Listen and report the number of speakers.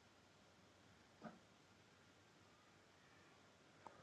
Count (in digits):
0